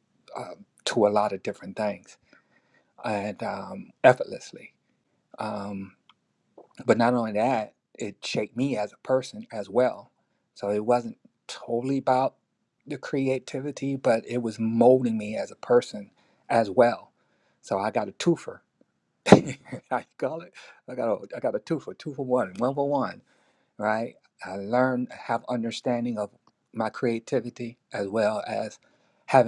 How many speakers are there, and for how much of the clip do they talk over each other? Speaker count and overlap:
1, no overlap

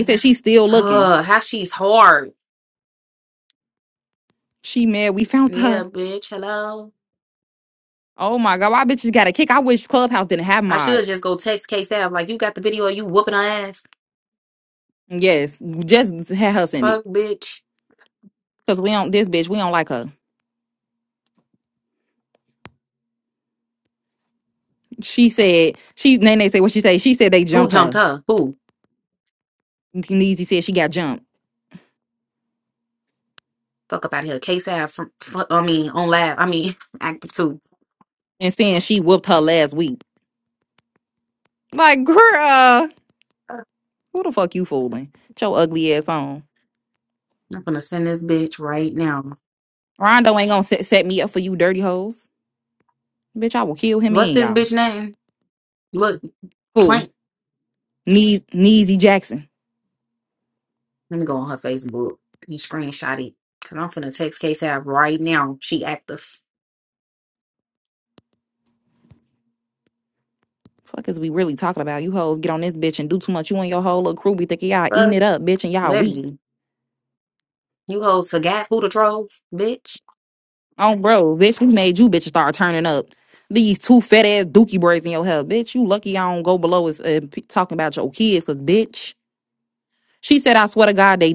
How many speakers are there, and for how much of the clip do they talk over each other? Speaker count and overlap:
2, about 3%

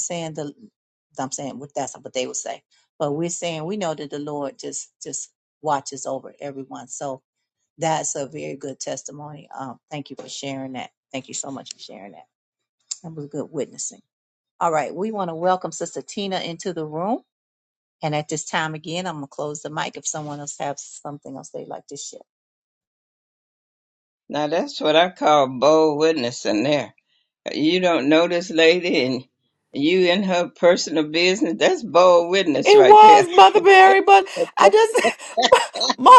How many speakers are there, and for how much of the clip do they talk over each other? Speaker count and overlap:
3, about 2%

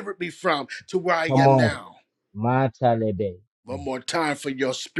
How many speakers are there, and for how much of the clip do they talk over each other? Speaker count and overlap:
2, about 9%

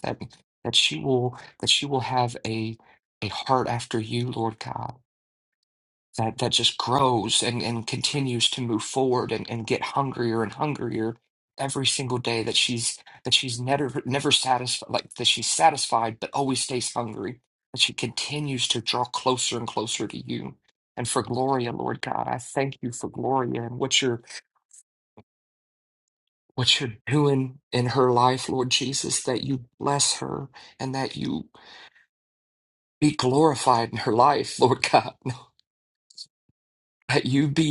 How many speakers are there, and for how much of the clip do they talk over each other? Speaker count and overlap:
1, no overlap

